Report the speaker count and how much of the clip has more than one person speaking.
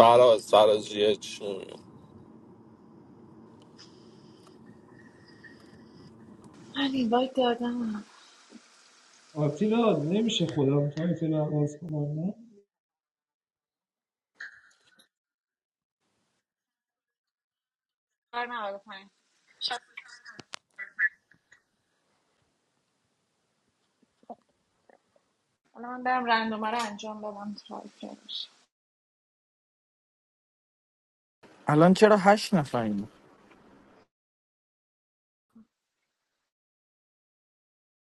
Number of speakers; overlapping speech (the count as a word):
four, no overlap